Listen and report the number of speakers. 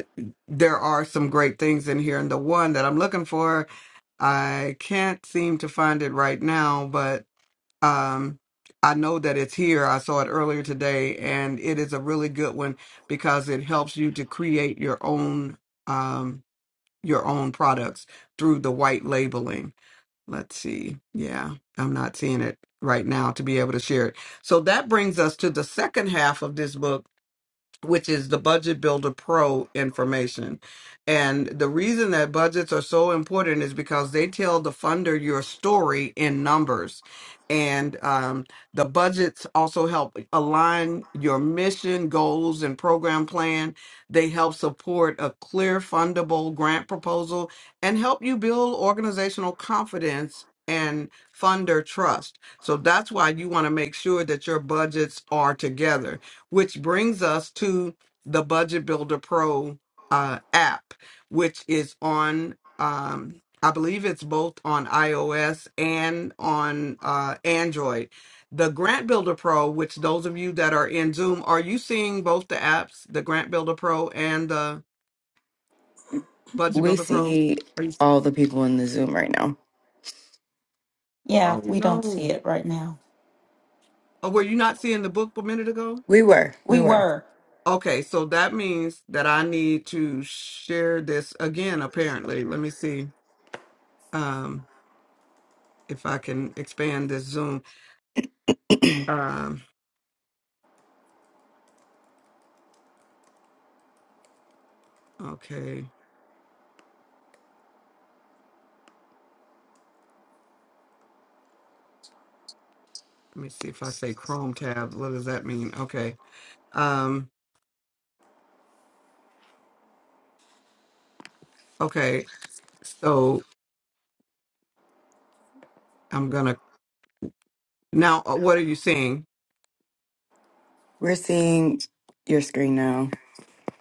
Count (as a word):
three